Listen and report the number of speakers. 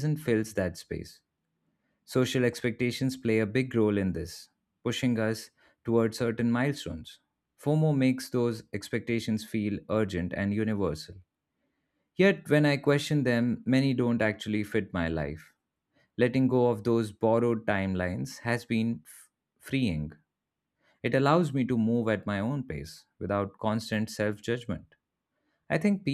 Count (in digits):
1